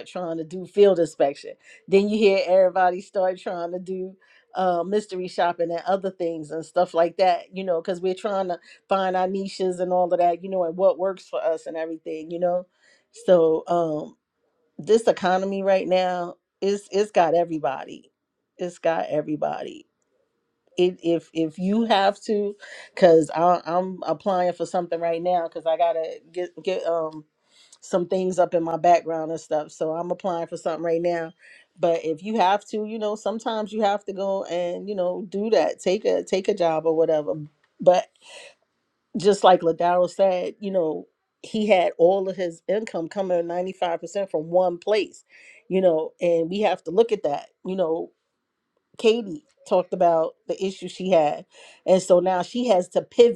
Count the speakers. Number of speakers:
1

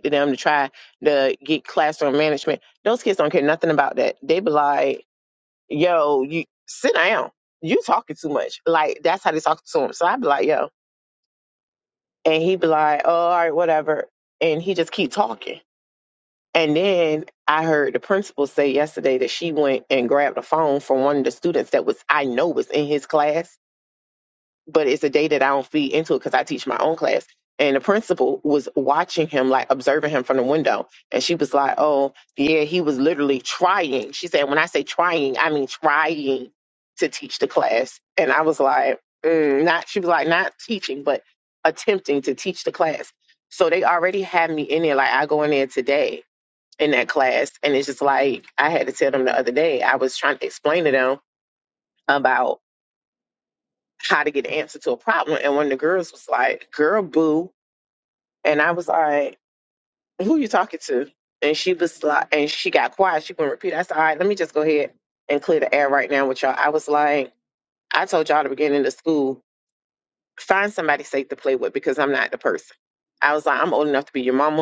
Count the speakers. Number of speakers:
1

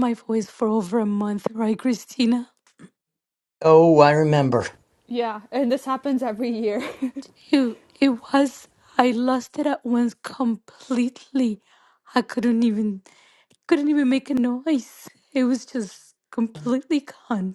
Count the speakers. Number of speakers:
3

